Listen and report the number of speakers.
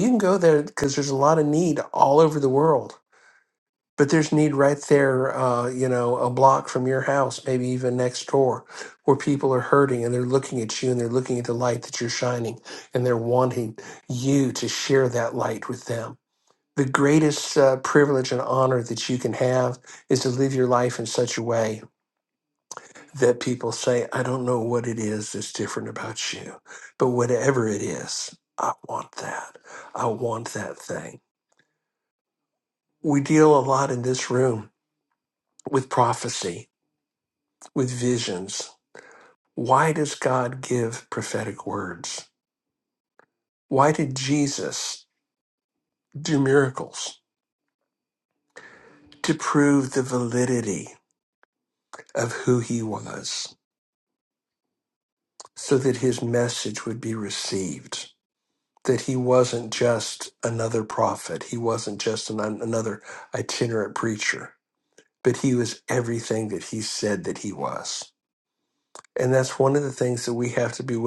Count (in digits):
1